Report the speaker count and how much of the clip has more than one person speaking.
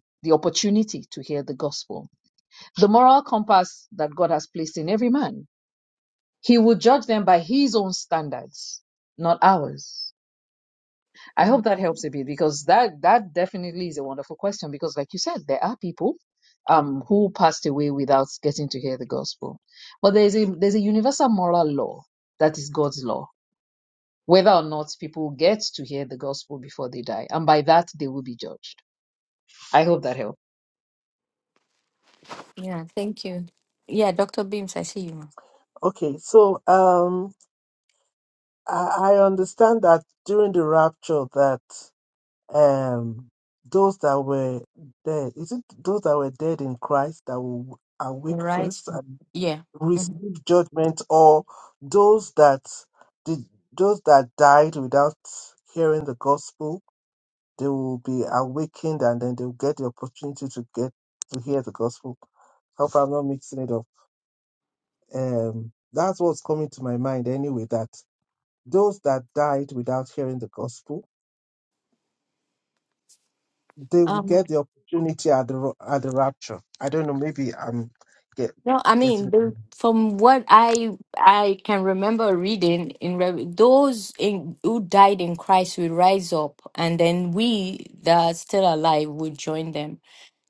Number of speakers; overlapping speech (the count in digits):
3, about 1%